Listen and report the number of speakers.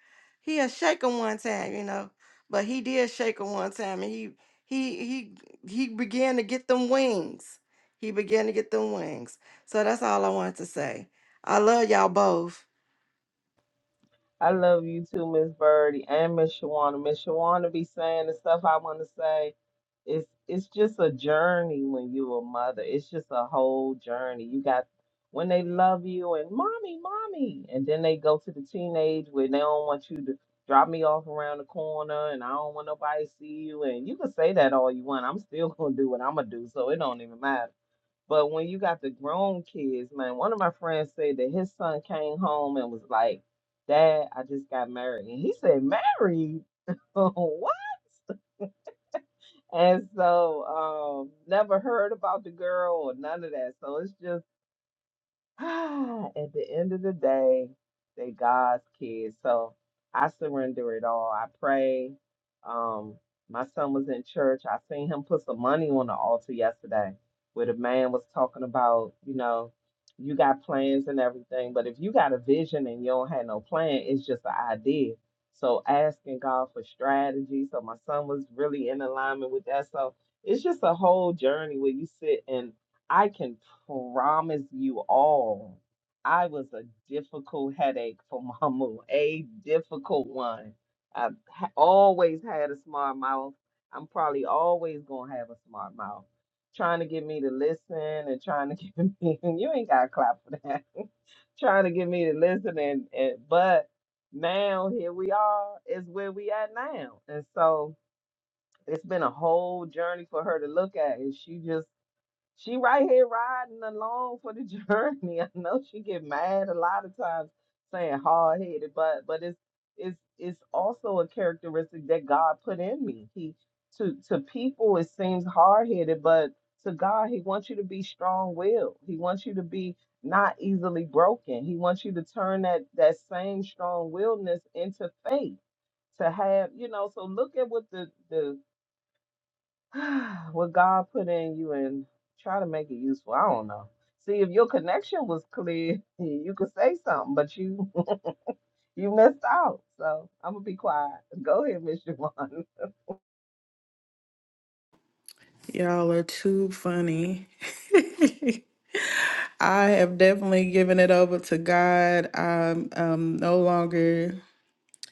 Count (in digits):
3